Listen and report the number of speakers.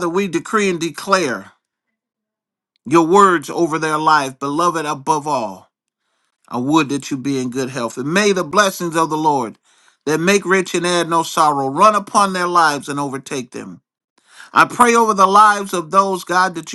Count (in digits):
1